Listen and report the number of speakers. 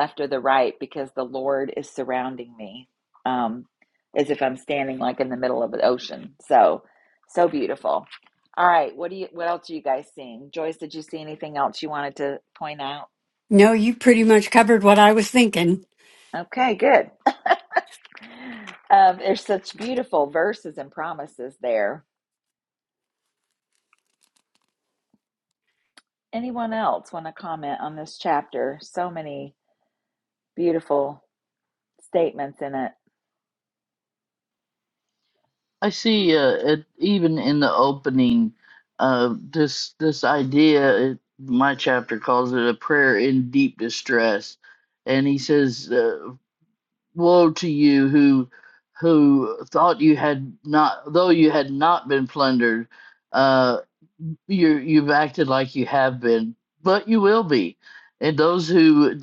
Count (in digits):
3